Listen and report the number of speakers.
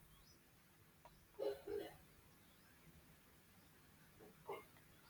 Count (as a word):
zero